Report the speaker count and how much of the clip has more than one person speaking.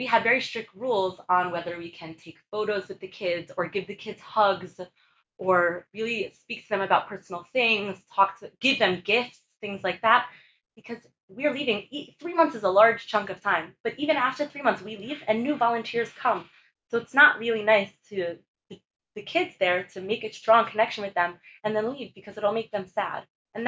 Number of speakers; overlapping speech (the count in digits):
1, no overlap